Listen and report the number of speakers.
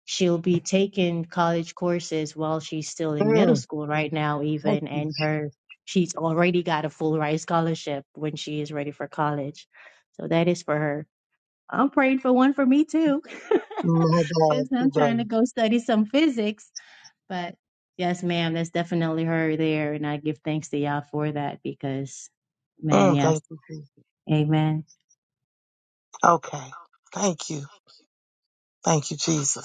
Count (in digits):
2